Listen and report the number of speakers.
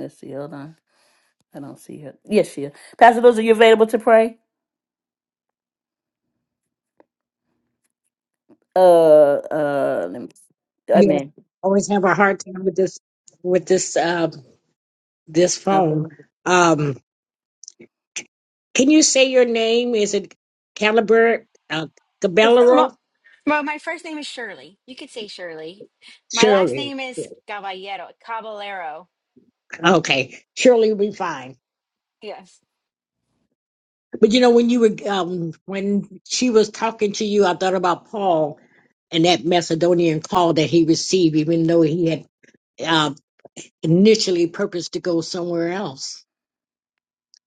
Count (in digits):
3